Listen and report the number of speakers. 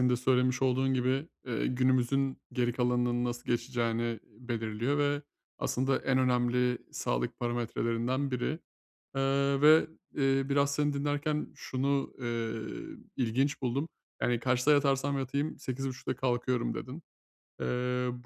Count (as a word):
one